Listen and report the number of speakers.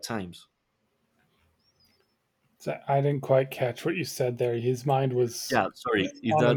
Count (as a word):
two